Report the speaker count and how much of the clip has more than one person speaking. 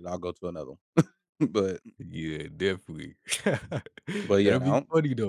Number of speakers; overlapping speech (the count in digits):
2, about 8%